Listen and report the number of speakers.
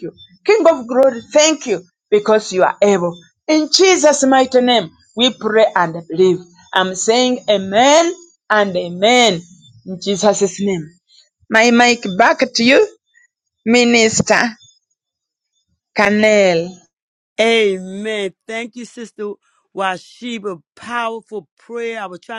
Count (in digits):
2